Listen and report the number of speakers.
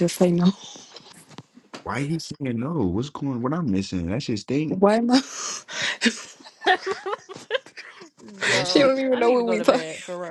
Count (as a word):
three